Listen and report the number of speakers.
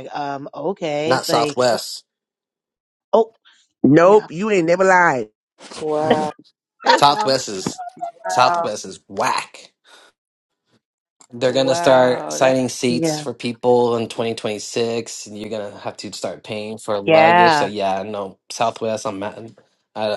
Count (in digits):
4